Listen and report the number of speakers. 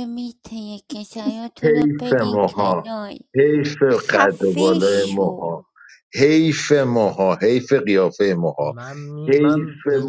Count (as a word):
three